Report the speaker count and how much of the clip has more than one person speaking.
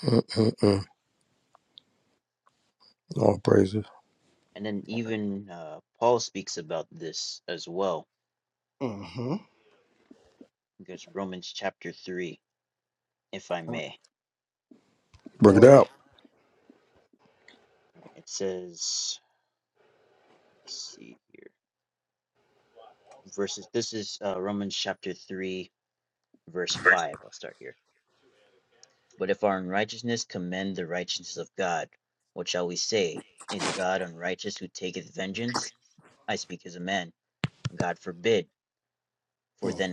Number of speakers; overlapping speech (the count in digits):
3, about 1%